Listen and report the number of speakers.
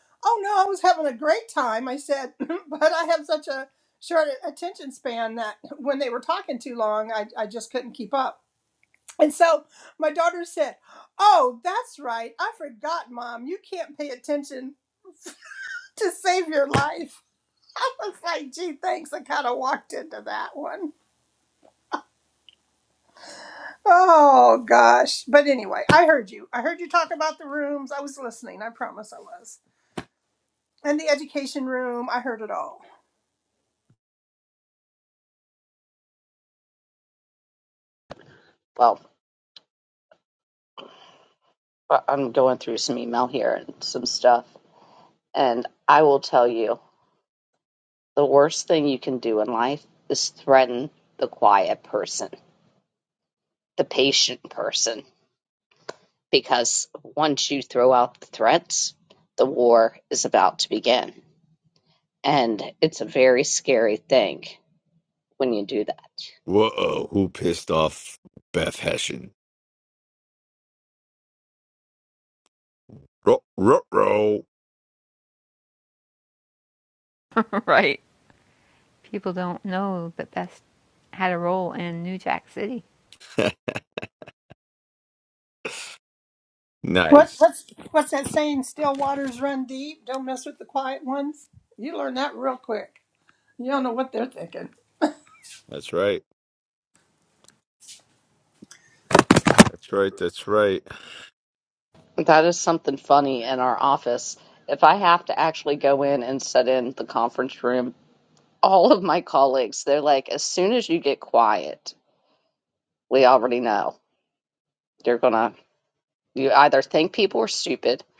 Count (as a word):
four